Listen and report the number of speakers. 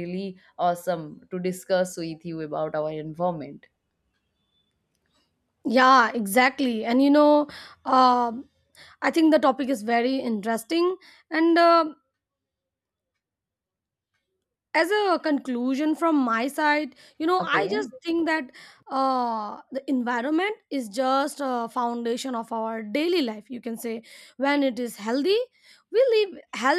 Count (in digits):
2